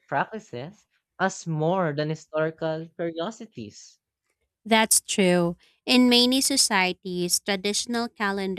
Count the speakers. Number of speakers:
2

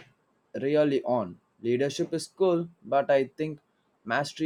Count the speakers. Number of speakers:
1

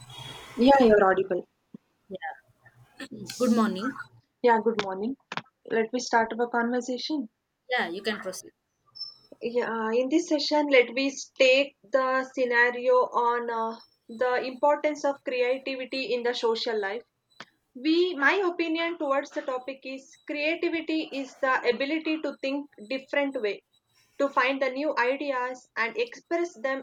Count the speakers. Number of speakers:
2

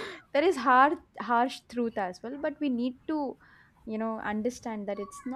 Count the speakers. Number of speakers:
1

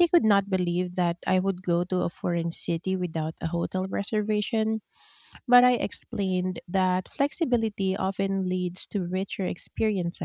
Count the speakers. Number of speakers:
1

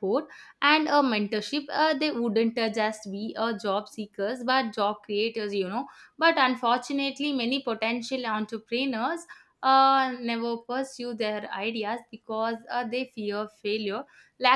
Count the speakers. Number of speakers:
1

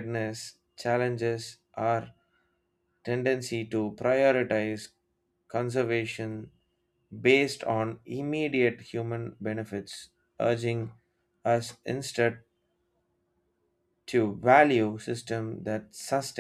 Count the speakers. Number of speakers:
1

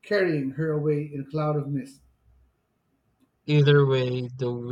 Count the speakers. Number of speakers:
2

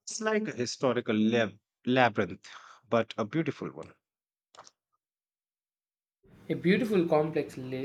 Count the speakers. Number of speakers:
2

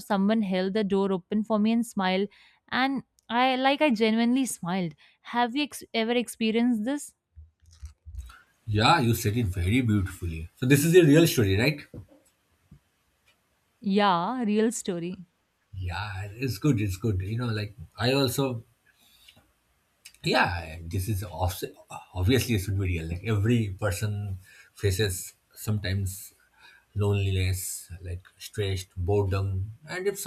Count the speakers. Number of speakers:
2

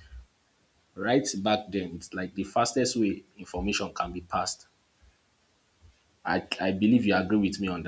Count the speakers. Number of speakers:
1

